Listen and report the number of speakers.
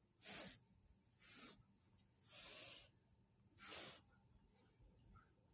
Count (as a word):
zero